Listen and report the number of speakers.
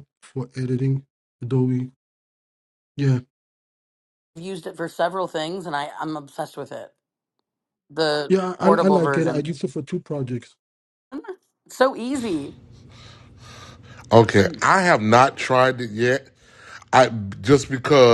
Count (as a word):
three